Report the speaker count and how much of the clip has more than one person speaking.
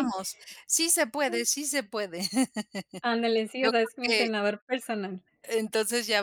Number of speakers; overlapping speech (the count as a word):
two, about 12%